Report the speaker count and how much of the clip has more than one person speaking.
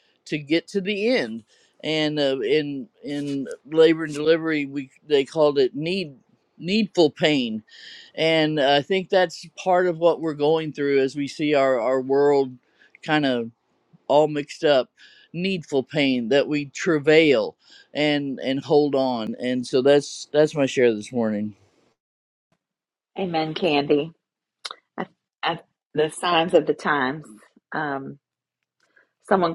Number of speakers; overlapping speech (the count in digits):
2, no overlap